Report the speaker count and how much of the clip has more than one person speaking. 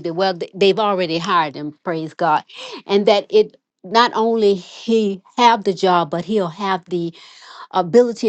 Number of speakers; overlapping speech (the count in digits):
1, no overlap